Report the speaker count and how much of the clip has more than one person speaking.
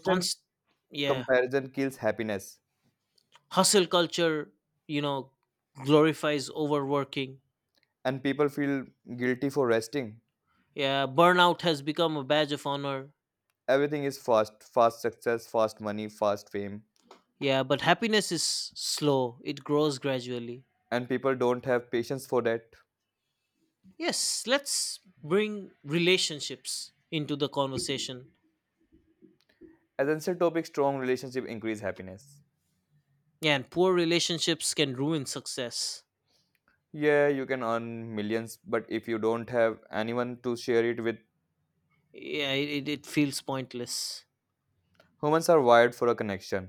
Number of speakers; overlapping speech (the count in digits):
2, about 1%